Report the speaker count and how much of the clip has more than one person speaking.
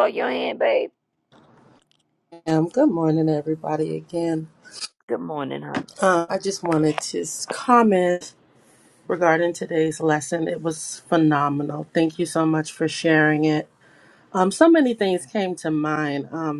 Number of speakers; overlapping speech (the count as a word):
two, no overlap